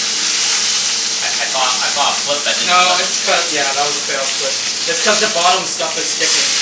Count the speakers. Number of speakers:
2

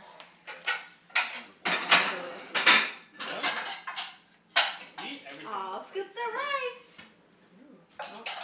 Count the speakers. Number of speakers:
4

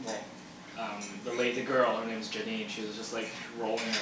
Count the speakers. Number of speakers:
1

